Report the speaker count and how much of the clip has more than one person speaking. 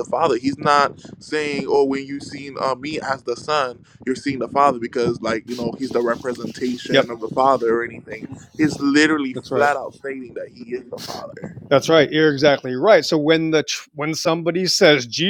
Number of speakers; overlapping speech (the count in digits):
2, about 3%